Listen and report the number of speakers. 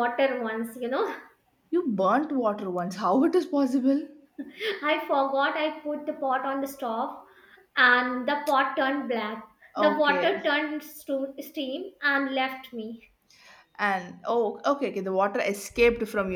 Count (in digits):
2